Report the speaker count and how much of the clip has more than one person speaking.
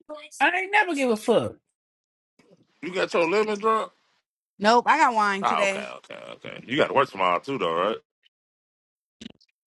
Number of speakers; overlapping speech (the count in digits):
3, about 5%